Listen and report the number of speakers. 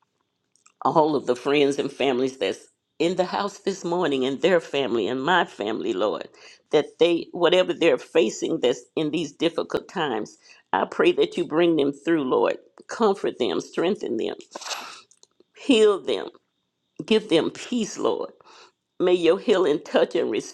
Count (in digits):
1